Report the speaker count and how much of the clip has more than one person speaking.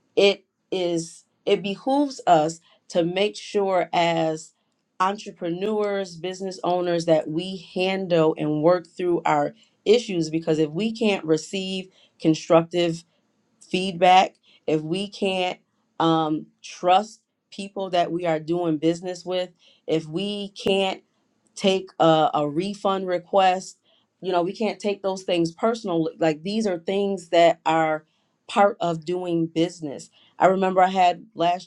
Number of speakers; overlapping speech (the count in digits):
1, no overlap